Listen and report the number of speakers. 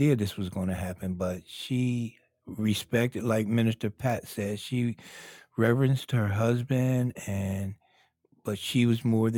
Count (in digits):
1